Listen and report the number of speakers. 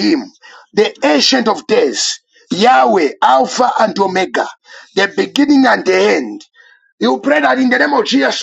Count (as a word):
one